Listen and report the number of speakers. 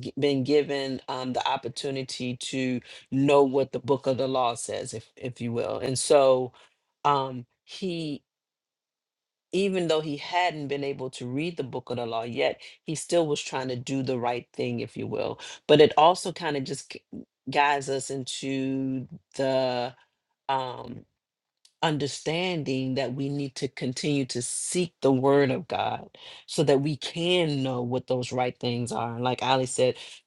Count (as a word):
one